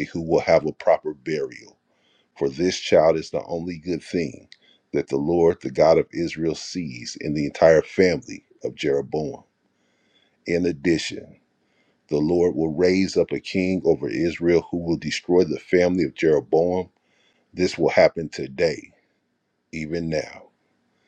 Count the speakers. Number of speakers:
one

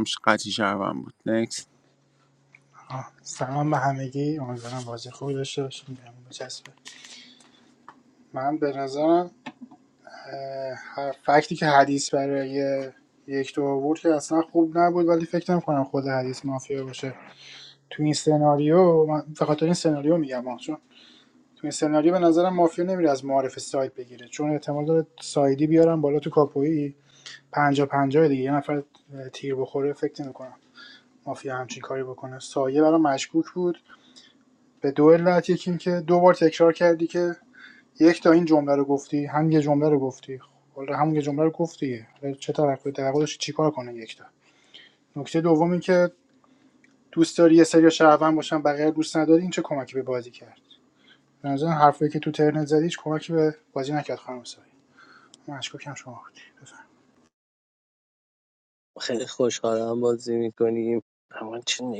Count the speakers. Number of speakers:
three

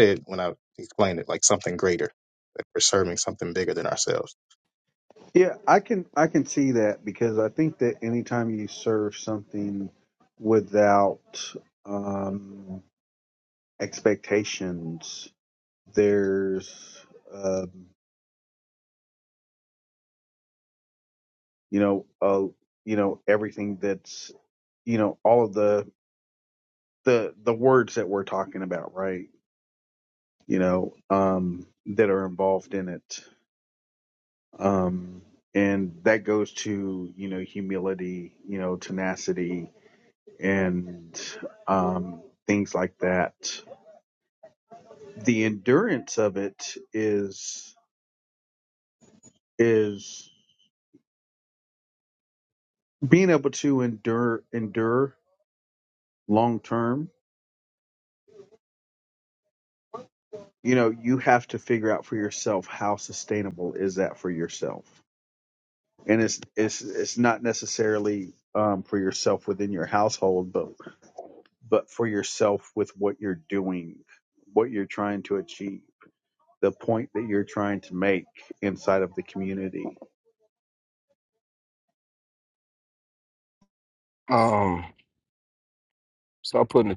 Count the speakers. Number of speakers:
three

